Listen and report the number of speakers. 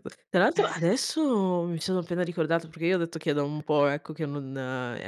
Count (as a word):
one